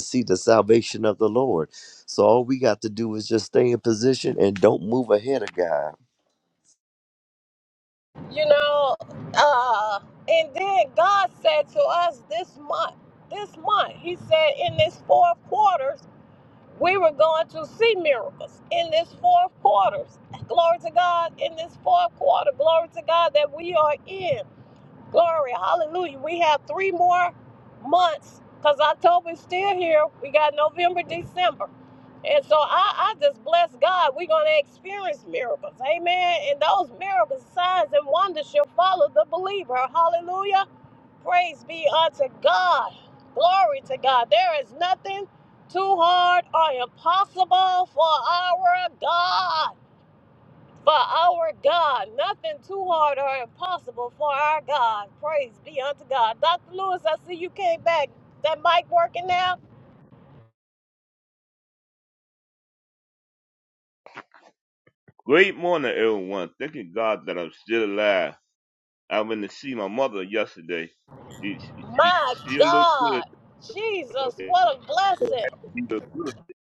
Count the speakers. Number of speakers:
3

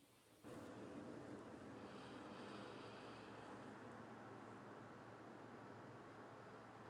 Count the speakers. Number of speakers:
0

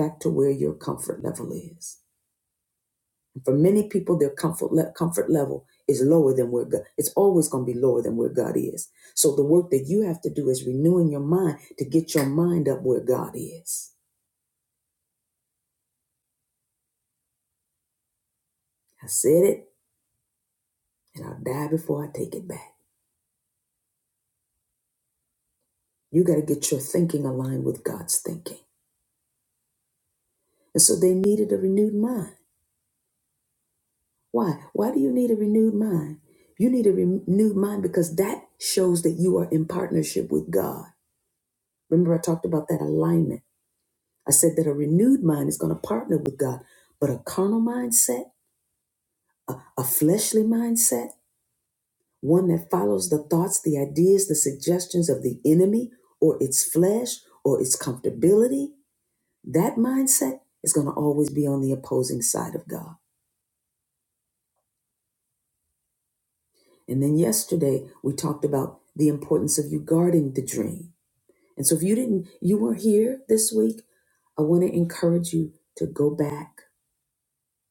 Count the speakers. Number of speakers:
1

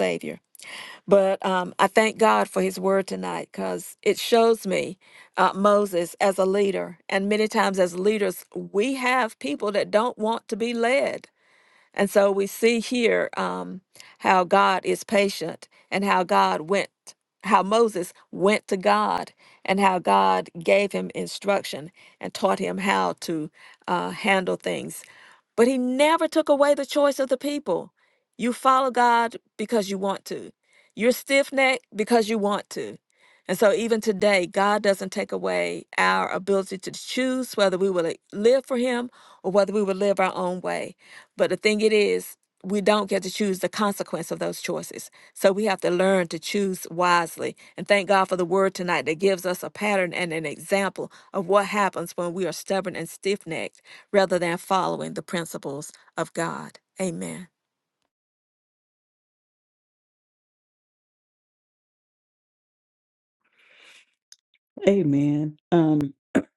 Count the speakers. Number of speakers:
2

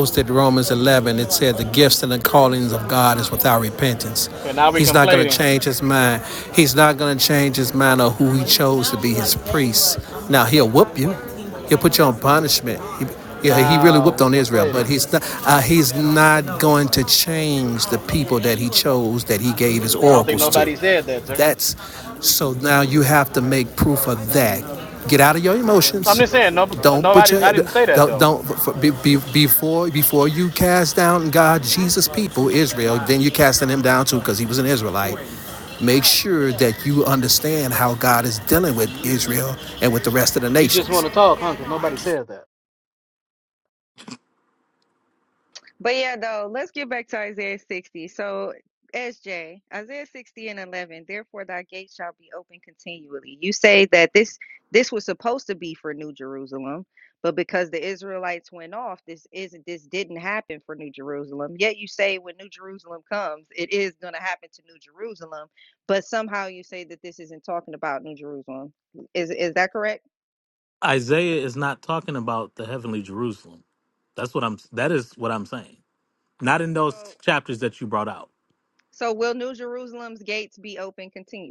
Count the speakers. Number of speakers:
4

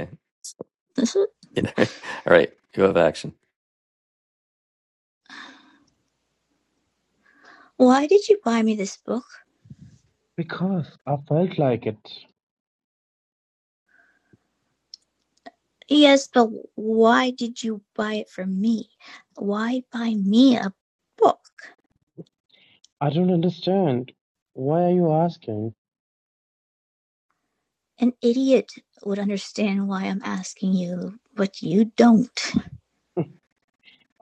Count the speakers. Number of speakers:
3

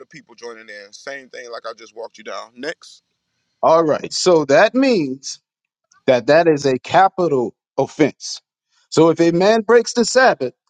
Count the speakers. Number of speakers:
2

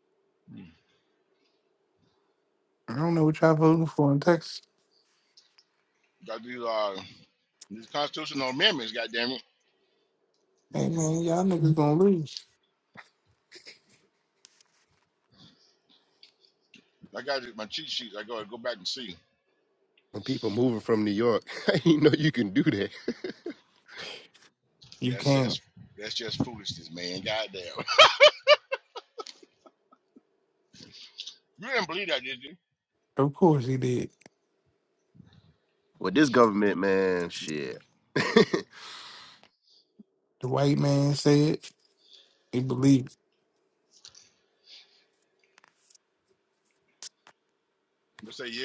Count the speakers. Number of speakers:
3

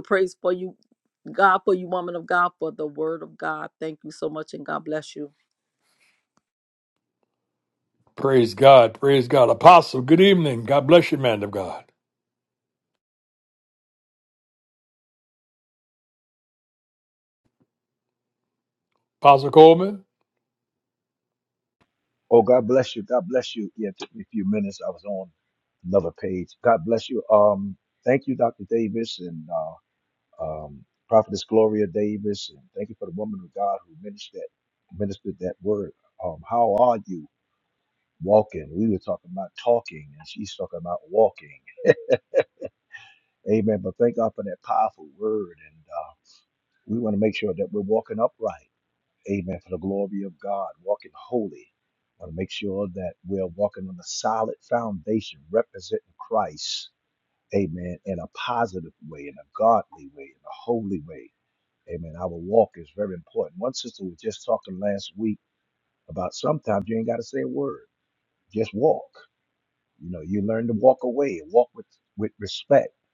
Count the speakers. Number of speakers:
3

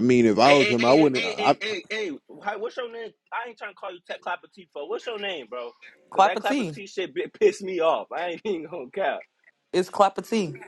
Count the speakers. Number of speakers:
3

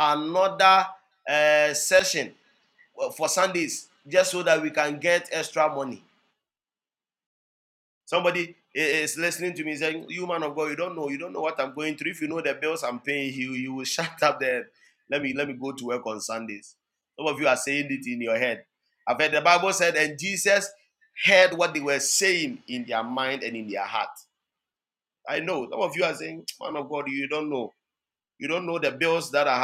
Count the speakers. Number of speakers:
1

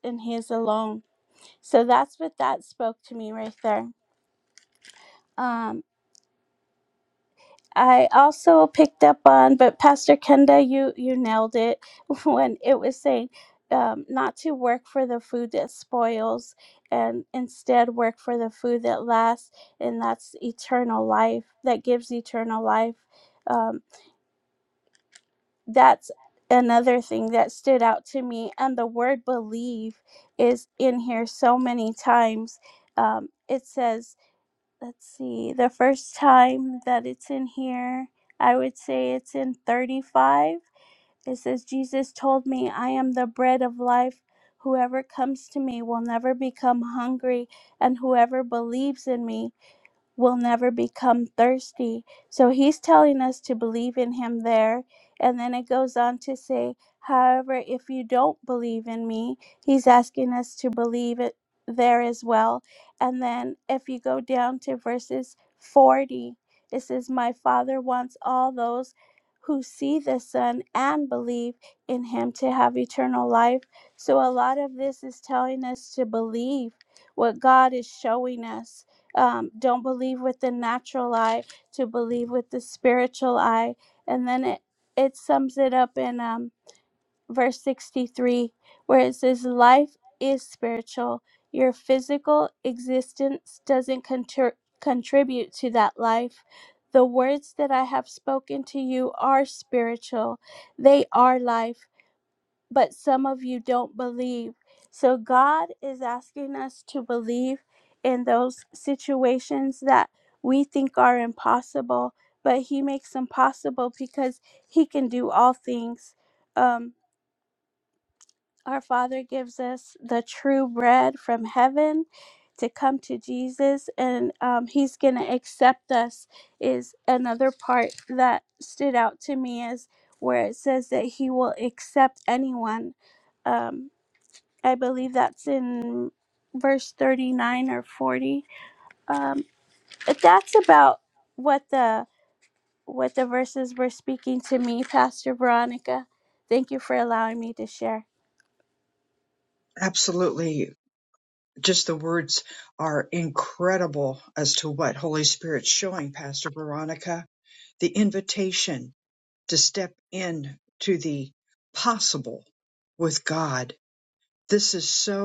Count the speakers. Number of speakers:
2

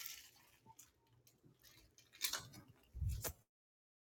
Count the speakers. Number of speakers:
0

